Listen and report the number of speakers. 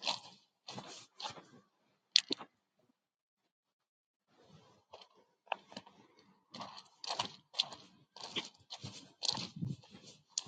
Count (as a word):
zero